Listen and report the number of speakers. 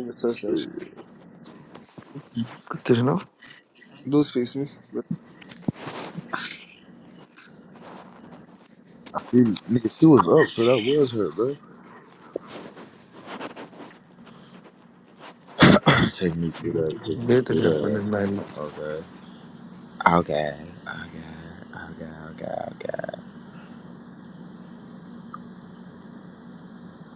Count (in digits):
3